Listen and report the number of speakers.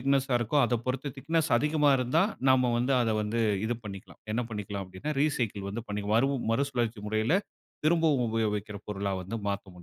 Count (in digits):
1